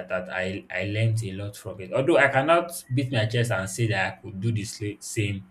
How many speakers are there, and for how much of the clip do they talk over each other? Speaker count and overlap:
1, no overlap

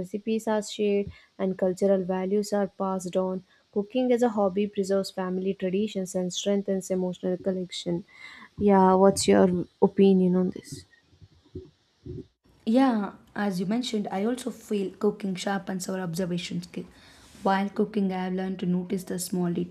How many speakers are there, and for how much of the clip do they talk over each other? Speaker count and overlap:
2, no overlap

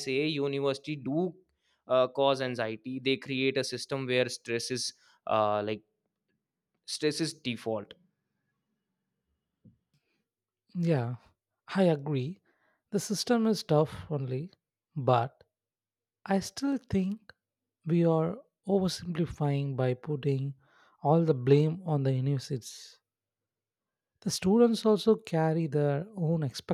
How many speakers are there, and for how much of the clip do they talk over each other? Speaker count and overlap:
2, no overlap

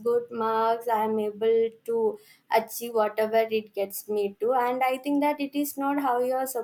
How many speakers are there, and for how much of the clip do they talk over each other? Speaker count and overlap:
1, no overlap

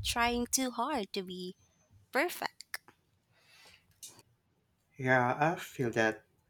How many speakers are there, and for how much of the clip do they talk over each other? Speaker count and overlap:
2, no overlap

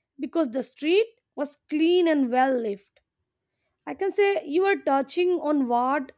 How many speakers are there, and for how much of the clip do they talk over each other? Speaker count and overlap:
1, no overlap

